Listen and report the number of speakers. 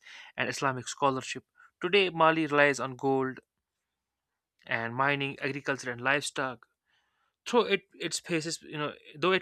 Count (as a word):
one